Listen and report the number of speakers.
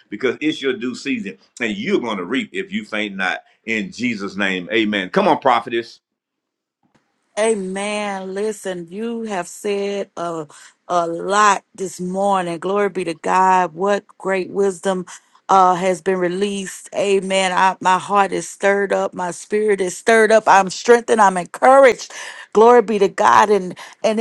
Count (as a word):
two